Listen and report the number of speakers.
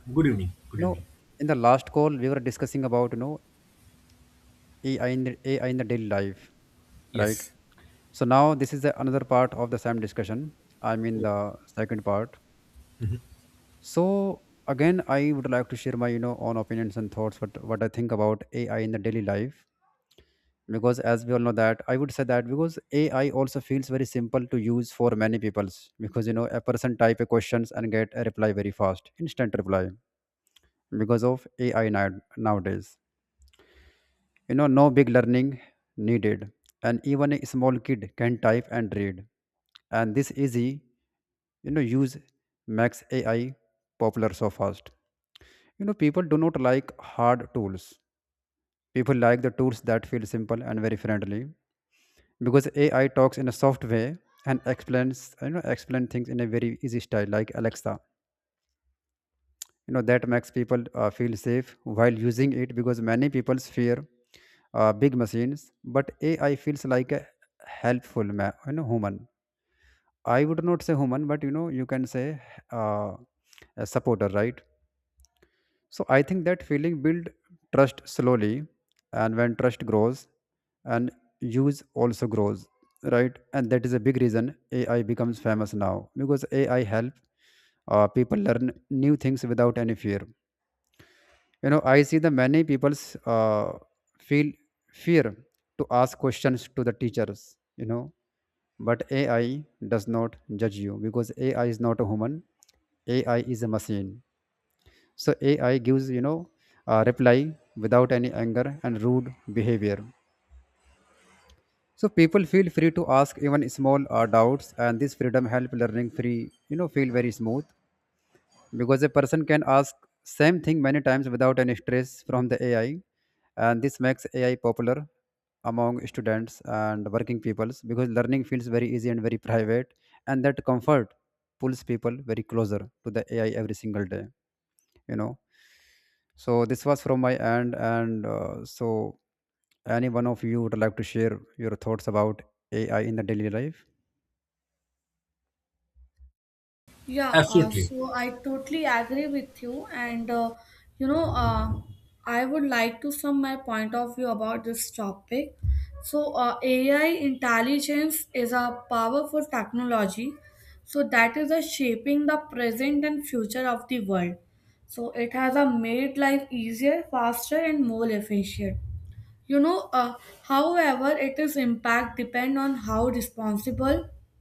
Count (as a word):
three